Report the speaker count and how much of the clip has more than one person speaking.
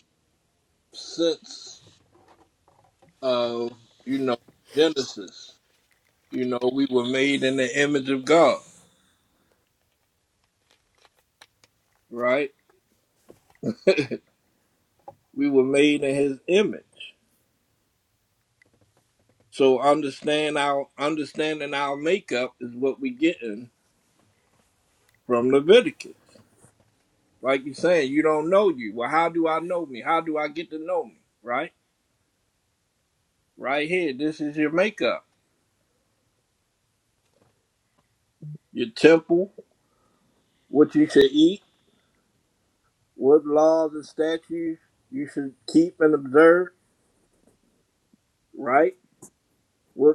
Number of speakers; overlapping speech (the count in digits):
1, no overlap